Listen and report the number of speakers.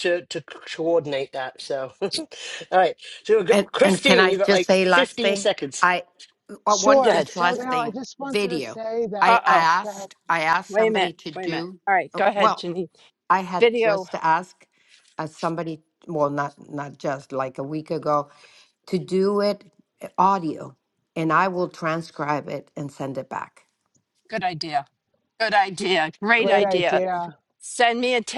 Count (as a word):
four